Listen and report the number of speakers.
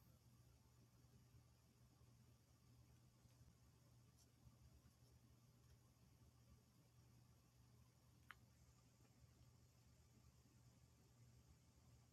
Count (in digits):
0